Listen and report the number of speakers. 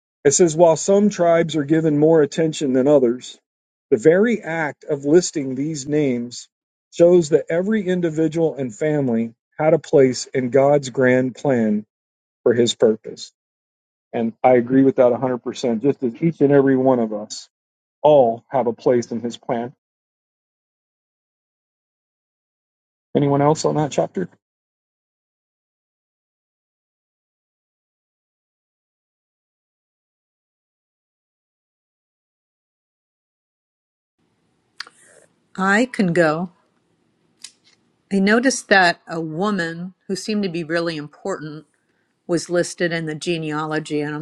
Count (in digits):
2